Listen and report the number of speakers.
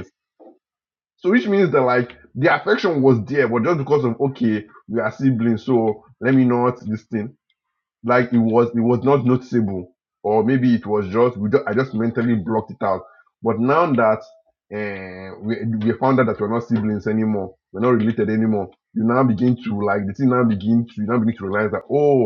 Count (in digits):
1